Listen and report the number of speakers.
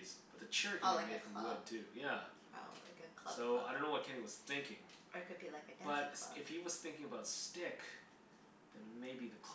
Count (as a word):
two